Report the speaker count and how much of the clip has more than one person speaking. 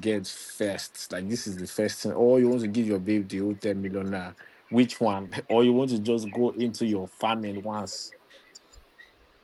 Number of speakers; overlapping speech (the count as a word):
one, no overlap